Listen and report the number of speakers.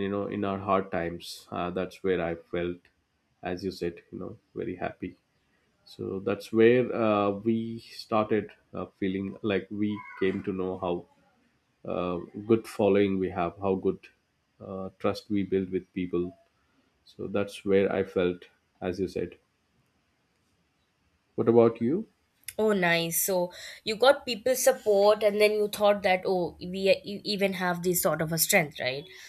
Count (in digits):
2